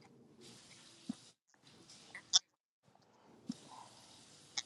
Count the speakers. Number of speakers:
zero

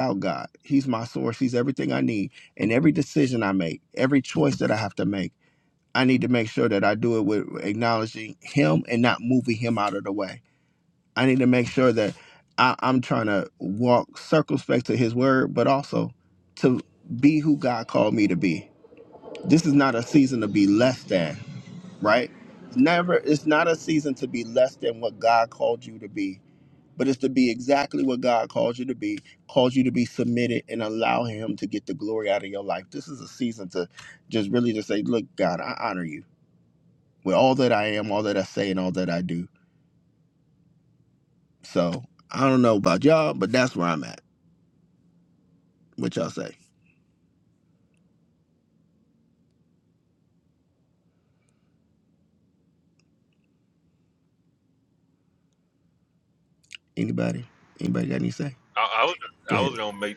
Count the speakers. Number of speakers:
two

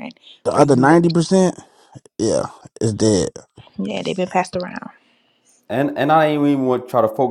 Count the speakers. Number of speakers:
three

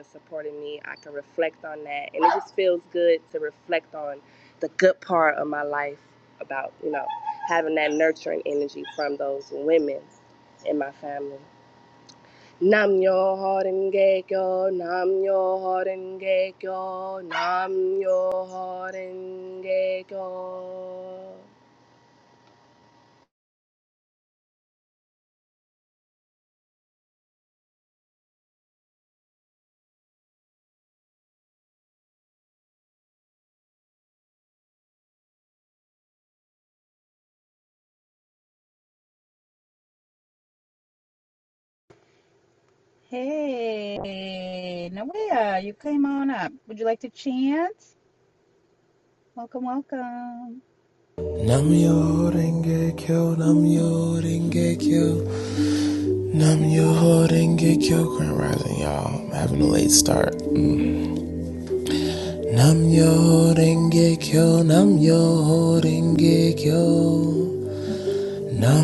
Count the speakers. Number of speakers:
three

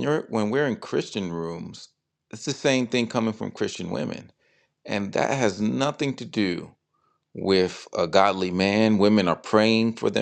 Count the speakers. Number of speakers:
one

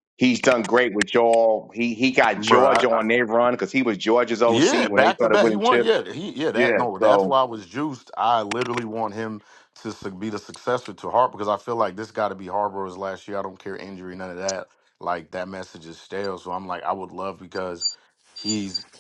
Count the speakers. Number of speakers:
two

